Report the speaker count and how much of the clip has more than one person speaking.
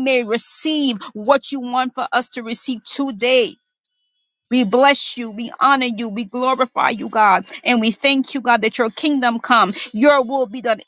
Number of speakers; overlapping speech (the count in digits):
1, no overlap